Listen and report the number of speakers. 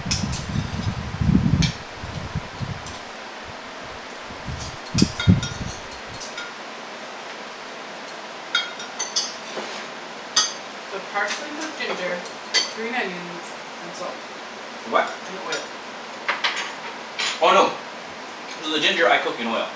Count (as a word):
two